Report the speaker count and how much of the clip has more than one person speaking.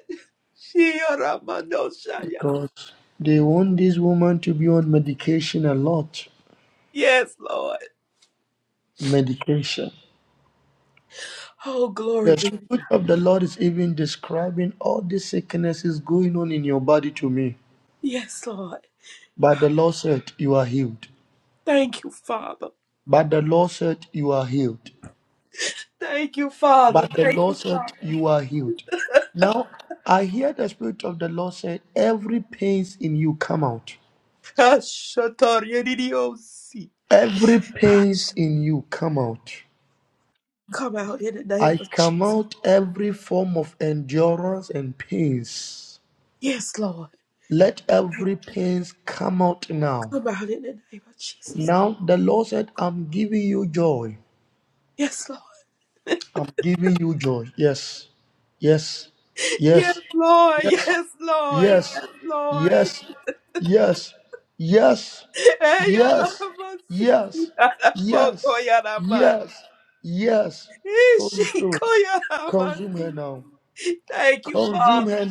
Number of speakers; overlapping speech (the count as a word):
two, about 10%